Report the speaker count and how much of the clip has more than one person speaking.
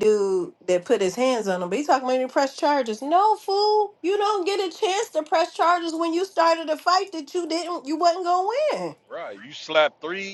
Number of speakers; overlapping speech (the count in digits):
2, no overlap